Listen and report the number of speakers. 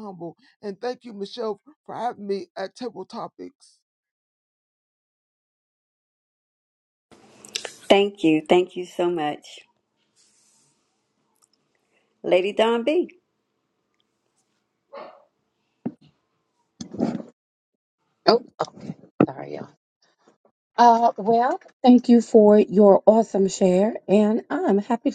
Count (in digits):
3